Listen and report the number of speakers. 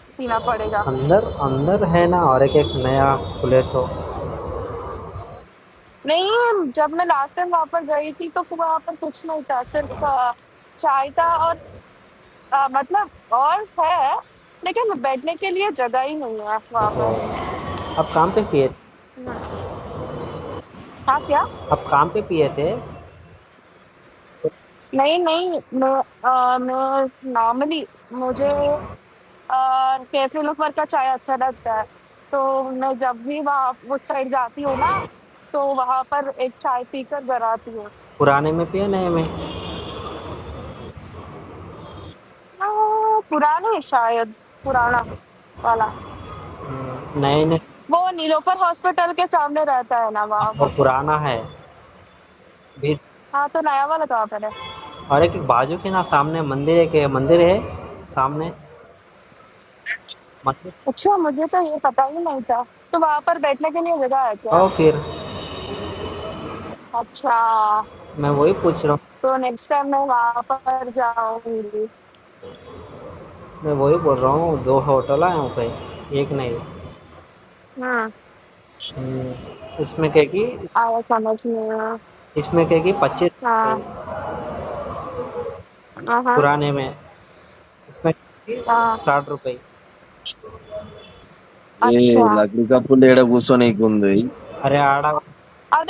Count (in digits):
3